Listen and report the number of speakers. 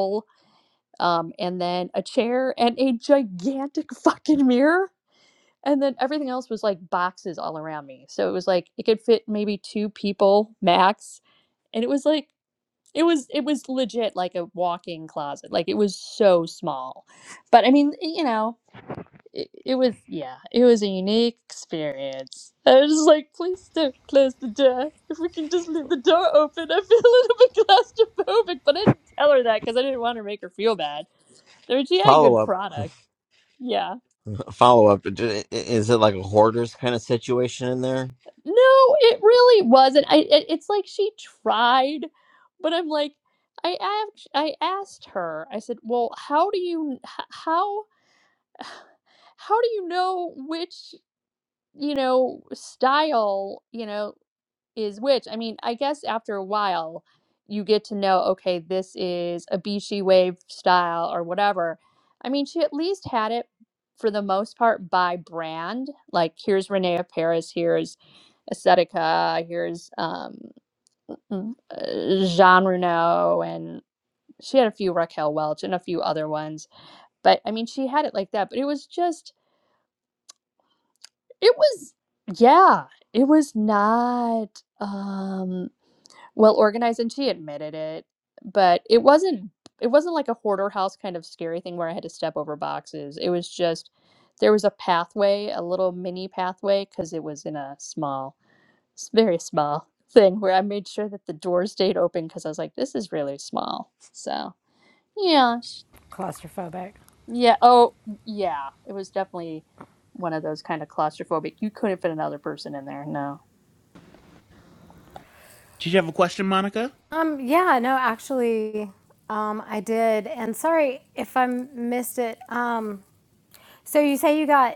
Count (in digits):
4